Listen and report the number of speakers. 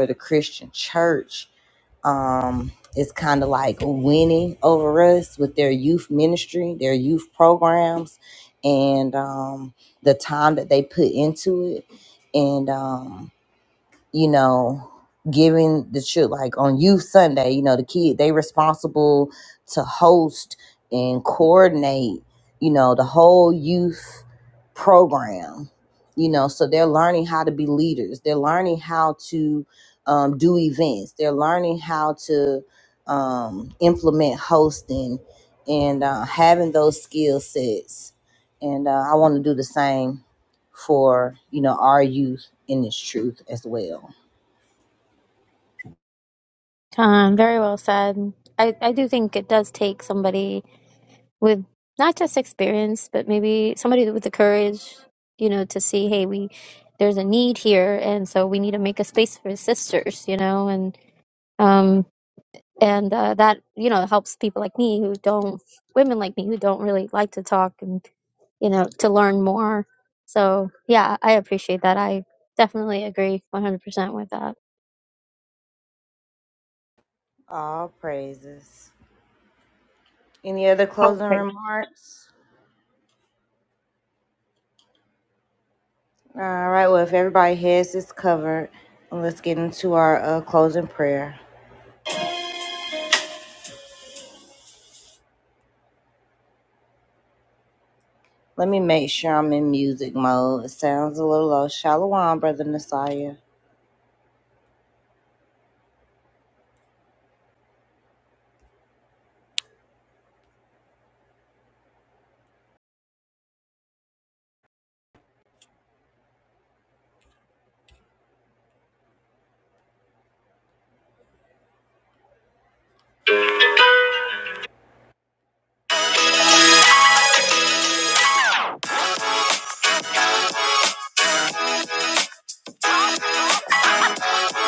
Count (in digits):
2